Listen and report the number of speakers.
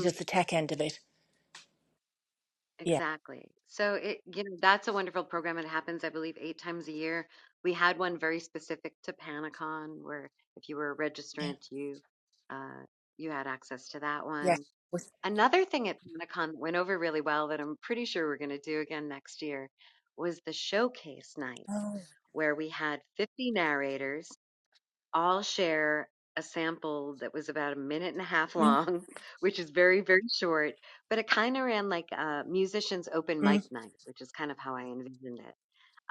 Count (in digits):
2